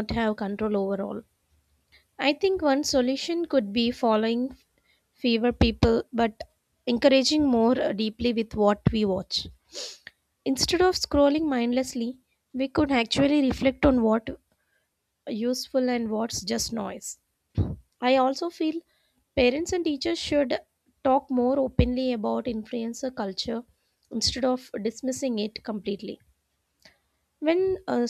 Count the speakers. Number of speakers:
1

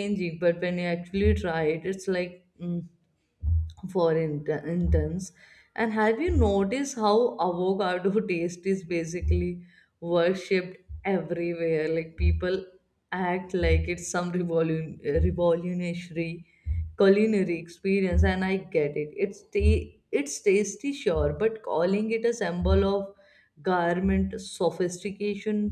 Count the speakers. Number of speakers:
1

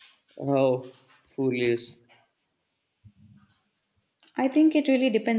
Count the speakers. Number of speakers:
2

